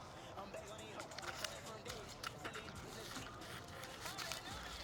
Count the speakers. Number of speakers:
0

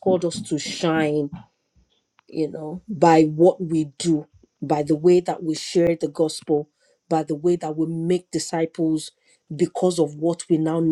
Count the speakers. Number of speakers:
1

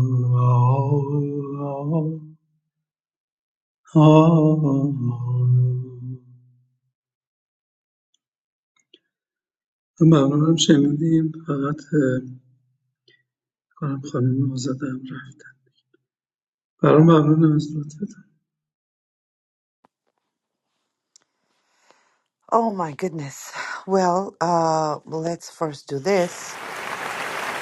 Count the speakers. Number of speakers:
2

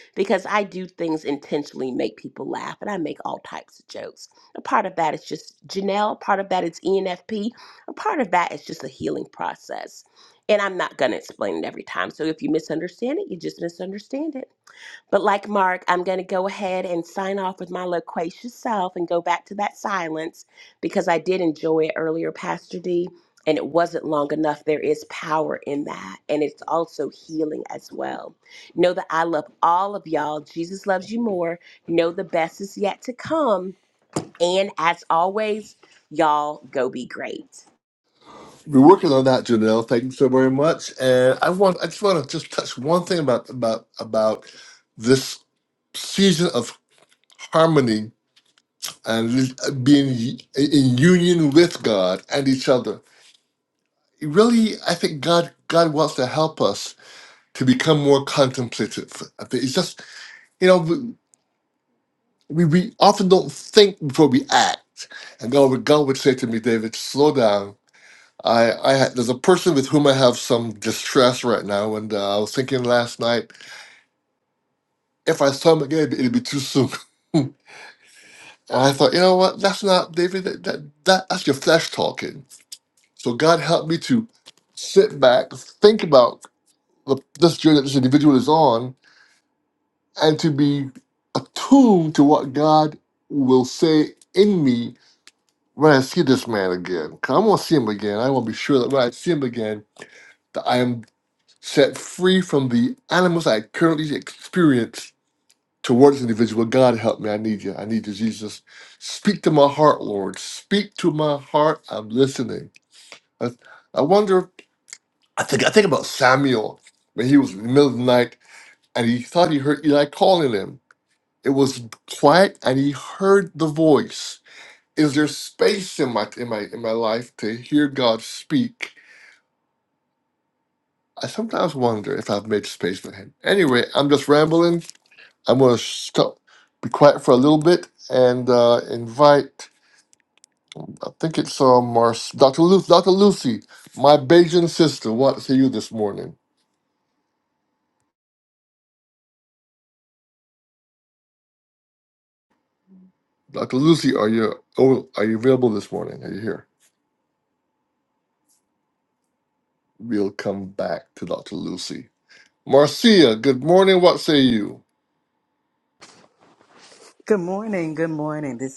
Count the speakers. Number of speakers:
3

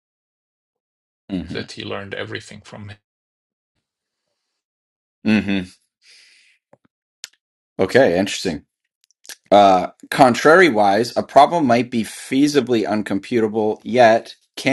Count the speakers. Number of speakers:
2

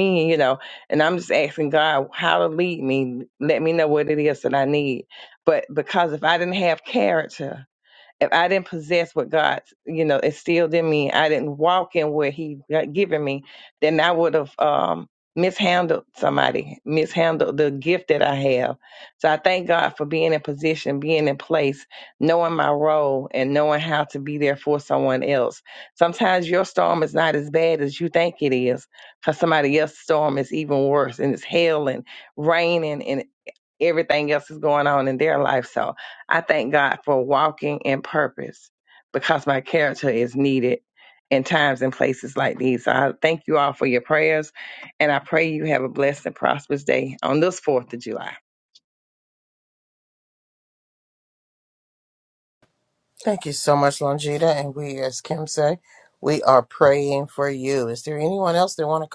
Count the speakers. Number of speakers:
2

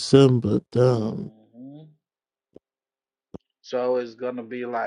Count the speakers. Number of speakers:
2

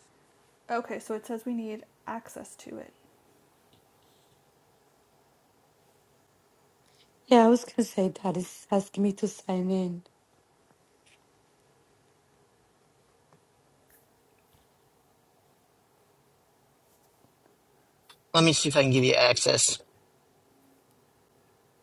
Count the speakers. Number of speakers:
3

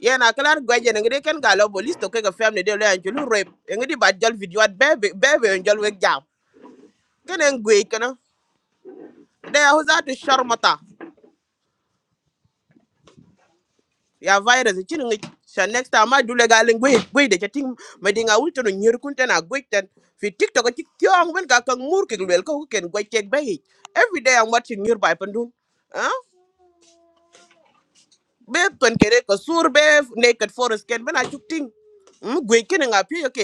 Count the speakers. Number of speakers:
1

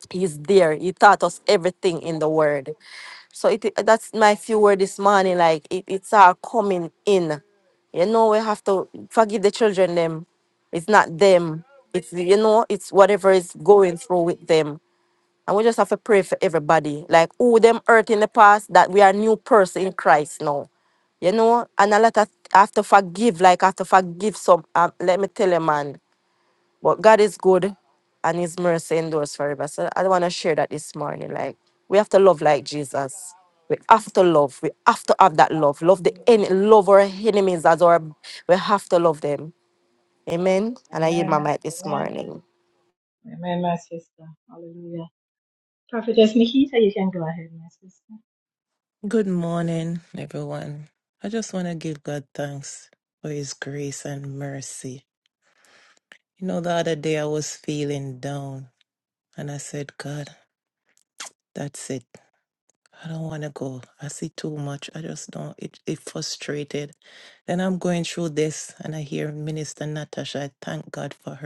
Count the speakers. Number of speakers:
3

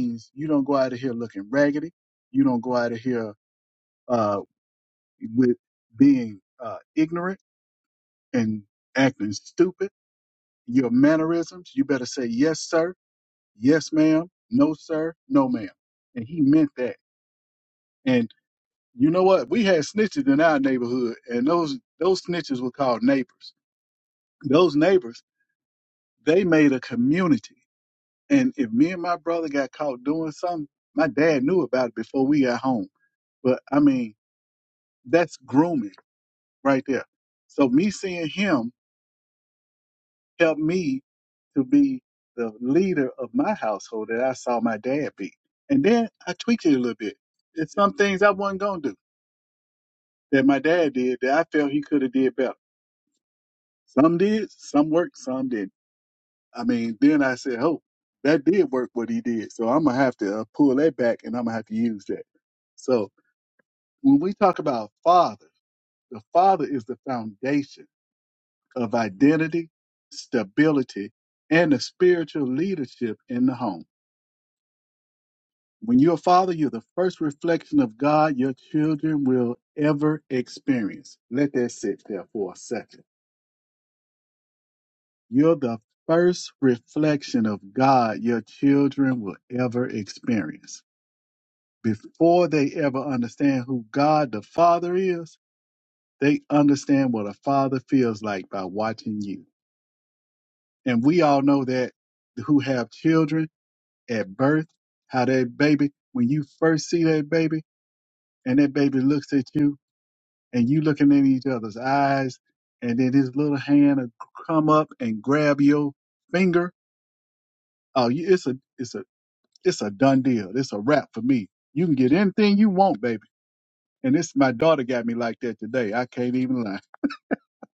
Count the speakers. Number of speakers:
1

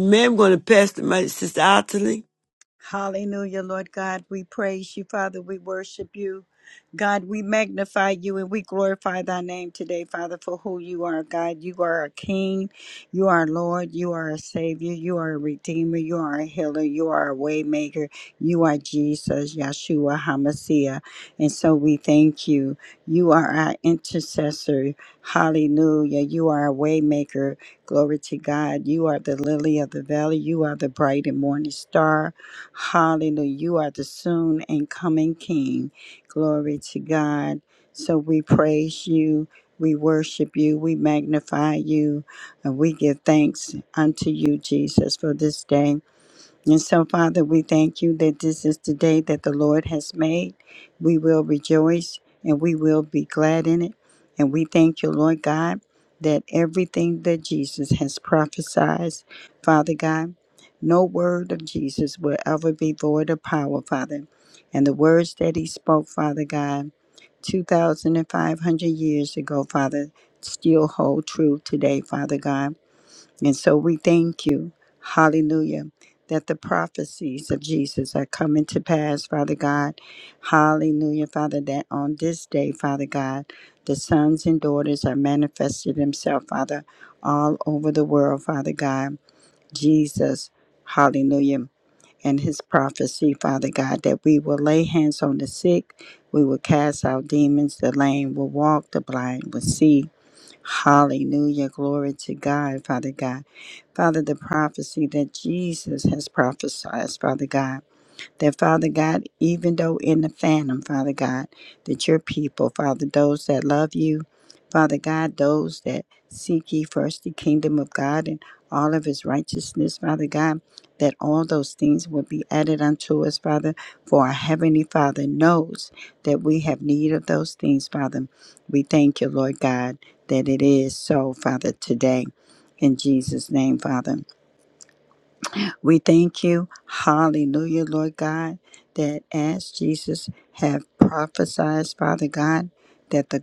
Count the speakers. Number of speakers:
2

